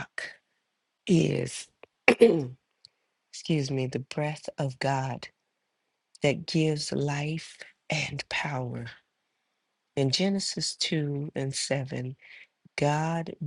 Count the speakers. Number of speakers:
one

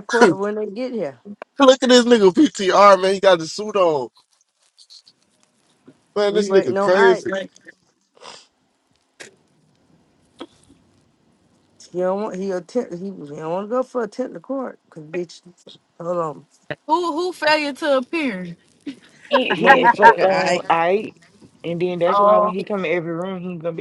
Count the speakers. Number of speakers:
four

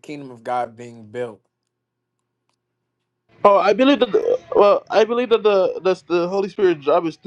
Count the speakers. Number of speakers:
two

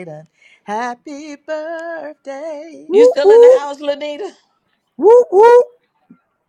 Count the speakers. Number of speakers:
three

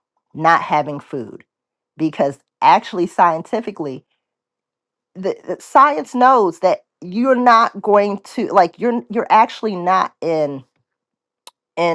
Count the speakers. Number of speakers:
one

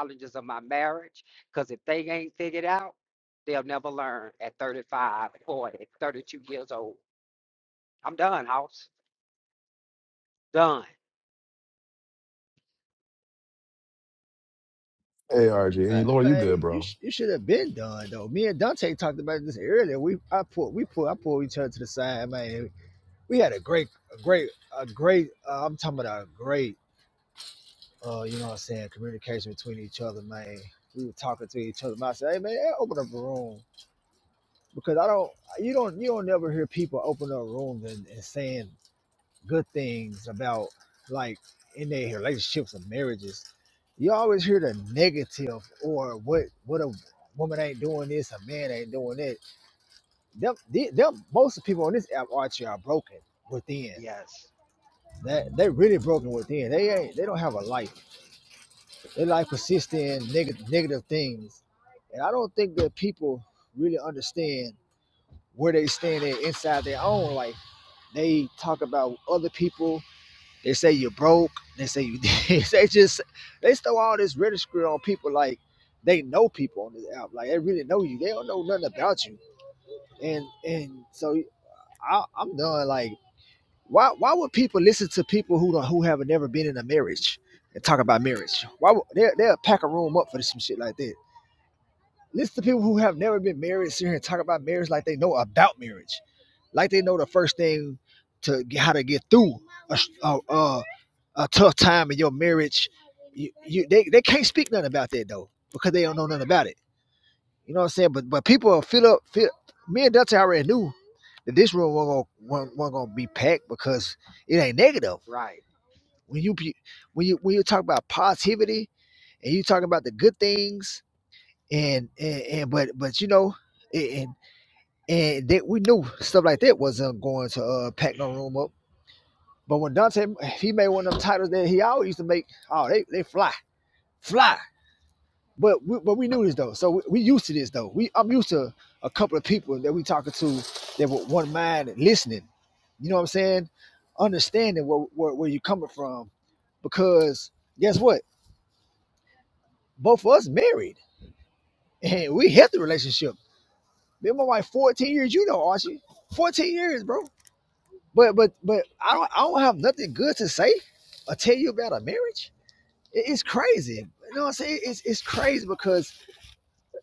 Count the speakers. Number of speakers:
three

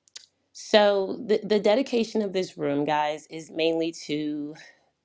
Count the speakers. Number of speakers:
one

